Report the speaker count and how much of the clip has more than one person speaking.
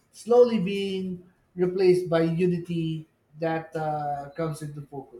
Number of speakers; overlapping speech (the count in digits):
1, no overlap